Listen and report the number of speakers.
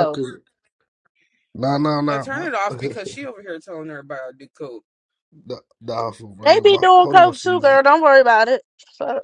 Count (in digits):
3